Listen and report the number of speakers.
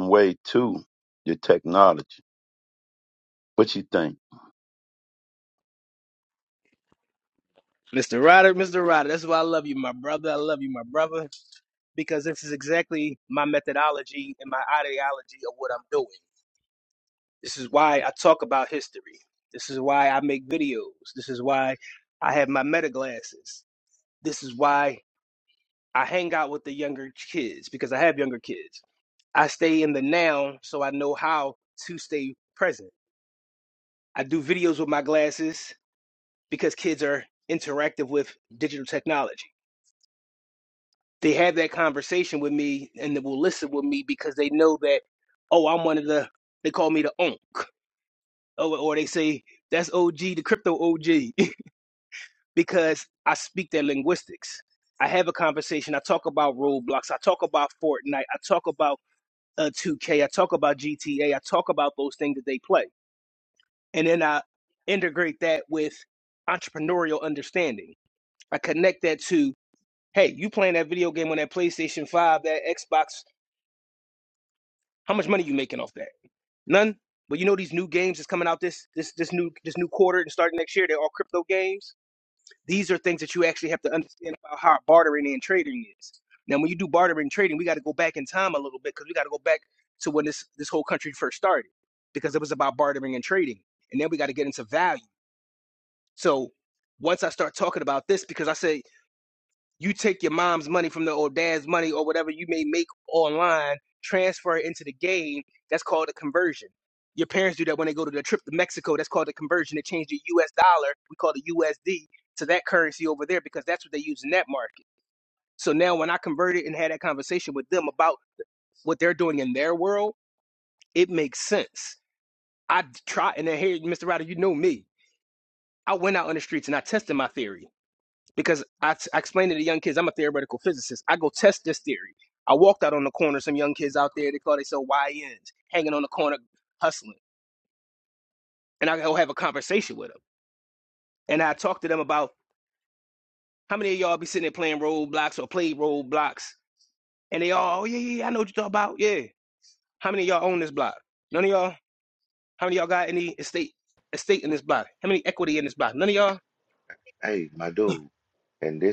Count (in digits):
3